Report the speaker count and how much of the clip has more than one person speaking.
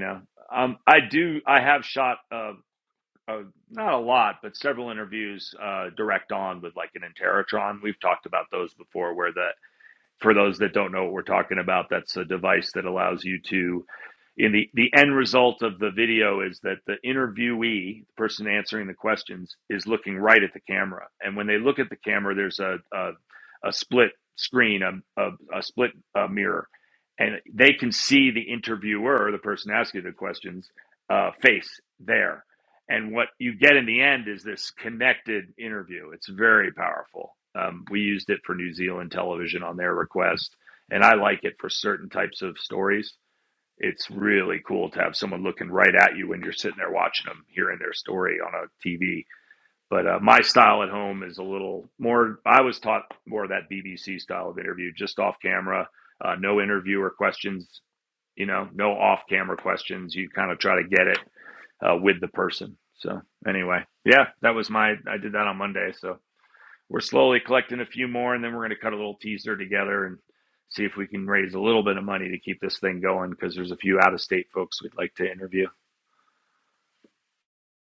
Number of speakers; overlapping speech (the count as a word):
one, no overlap